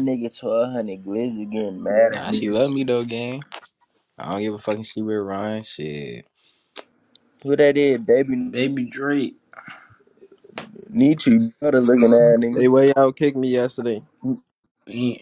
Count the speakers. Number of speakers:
4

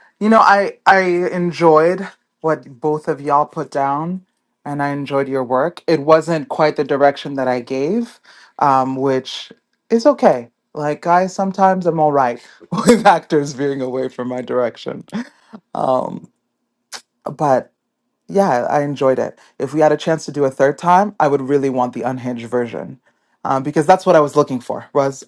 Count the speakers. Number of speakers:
1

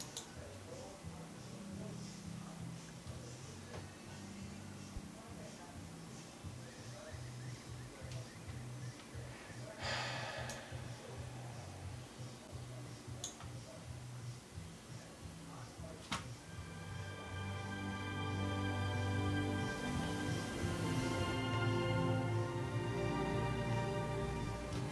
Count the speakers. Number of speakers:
0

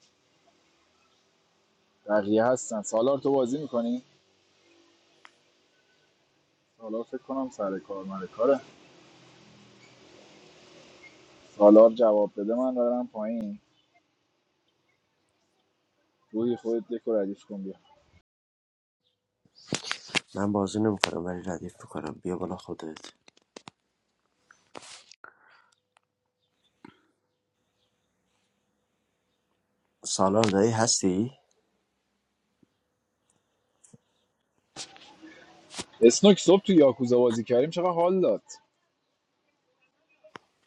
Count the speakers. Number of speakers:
2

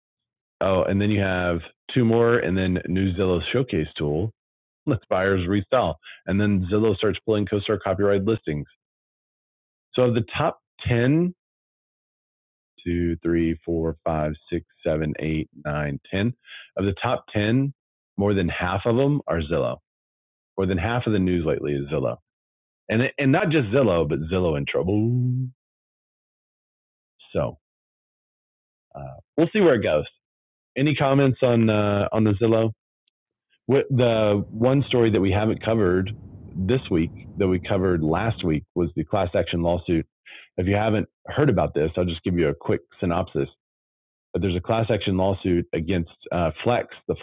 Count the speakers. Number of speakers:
1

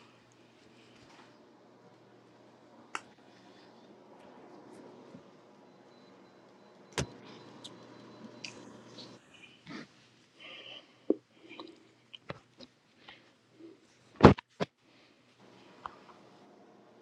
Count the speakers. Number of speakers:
0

